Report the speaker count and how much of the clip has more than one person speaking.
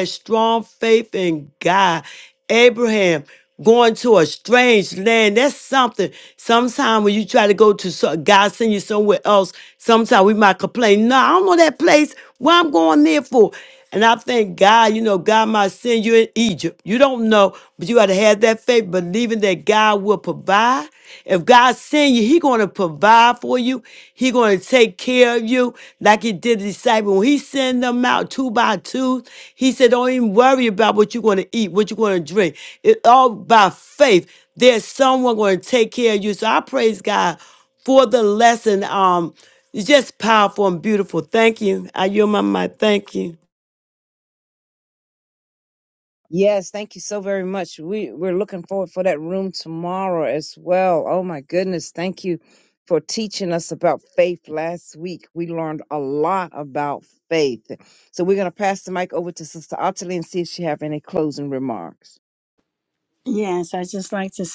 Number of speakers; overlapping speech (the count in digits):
3, no overlap